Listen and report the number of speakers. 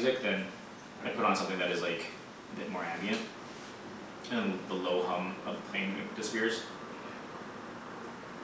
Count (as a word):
one